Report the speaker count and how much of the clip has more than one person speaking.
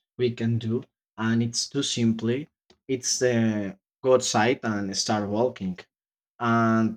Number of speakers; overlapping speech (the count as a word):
one, no overlap